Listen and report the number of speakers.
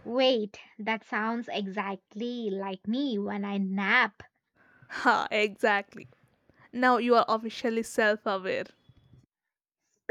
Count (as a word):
two